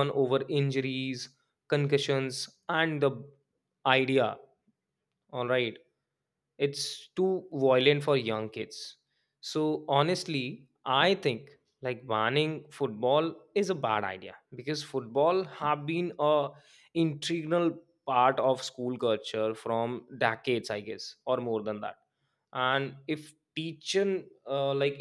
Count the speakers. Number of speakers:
one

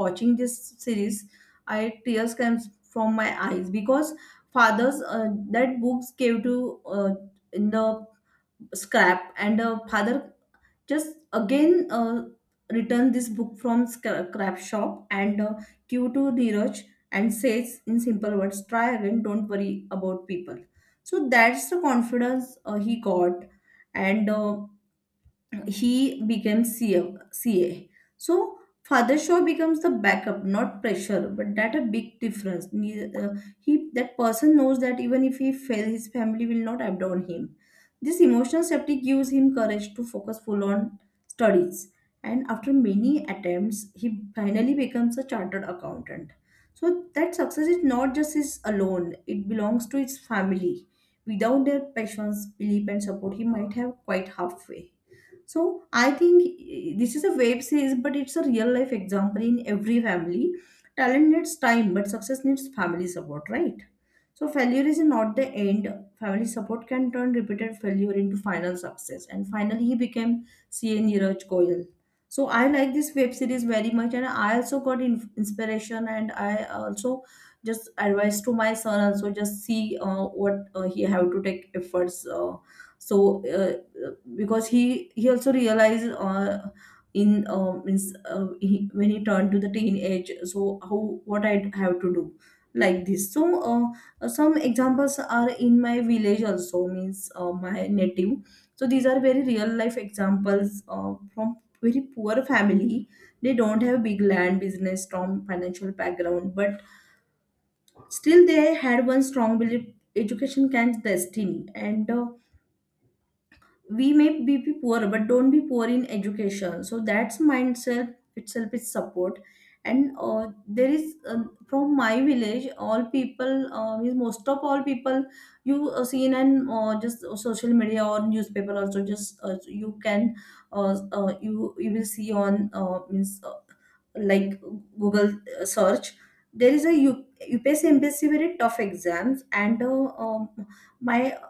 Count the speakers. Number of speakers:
one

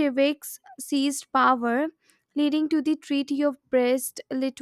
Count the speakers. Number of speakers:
one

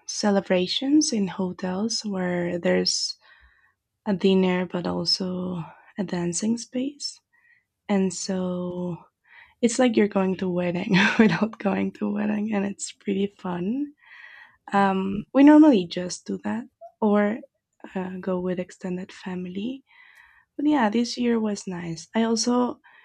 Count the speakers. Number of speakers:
one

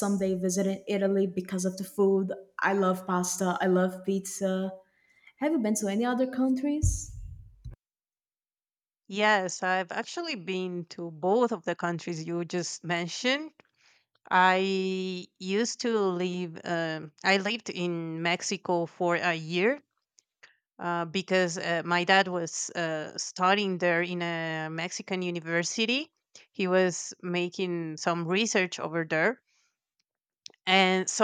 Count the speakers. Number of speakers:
two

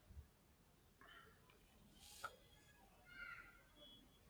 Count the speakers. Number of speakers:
zero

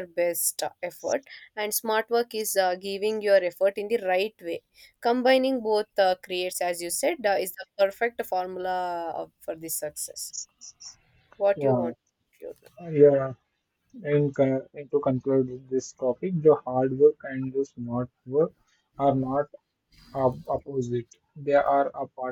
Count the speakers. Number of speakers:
two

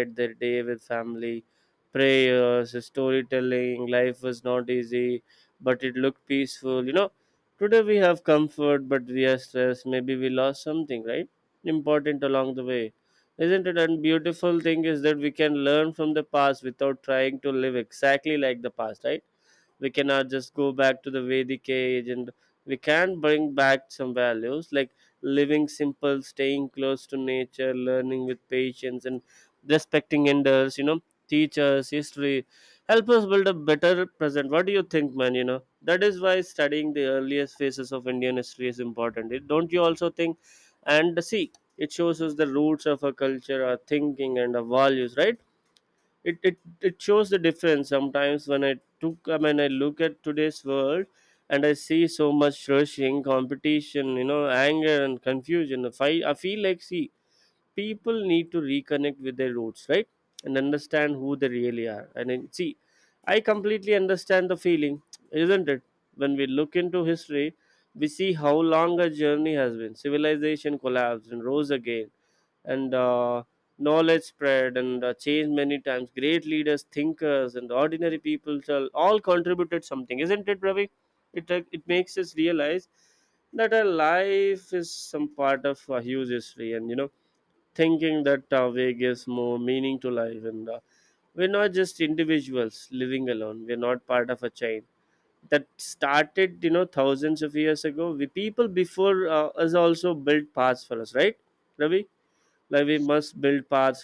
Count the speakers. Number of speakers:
one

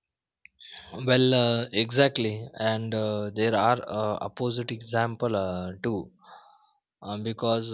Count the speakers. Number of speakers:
one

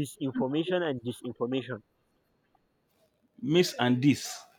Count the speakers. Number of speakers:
two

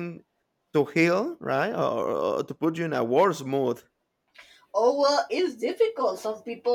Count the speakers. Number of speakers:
two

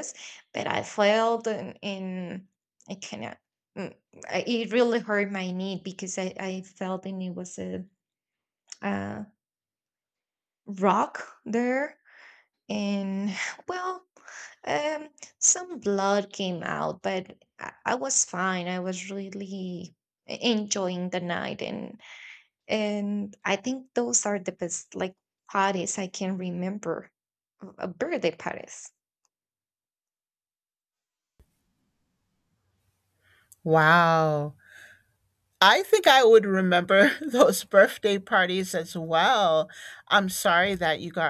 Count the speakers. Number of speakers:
two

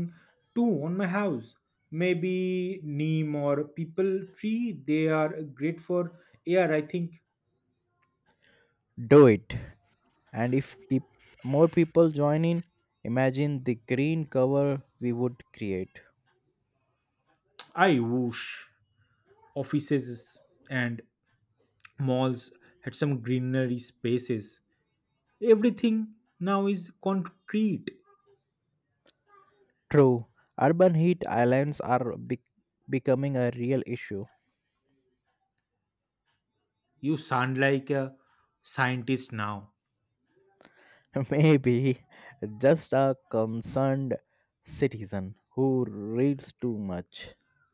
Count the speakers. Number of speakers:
two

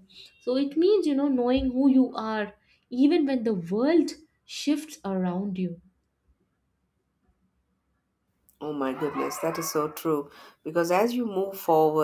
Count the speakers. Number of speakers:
two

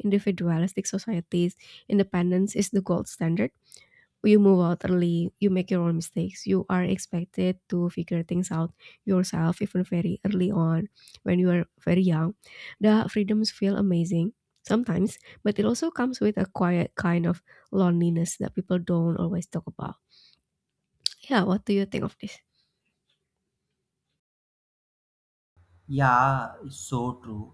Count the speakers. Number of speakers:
two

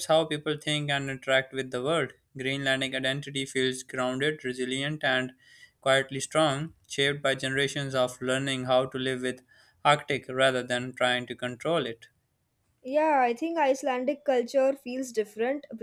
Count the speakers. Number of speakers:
two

